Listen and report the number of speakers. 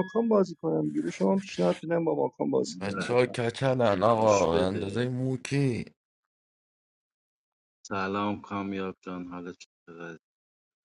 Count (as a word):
three